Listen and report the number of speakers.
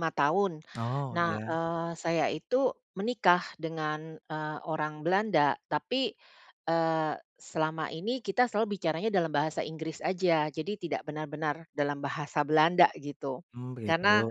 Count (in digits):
2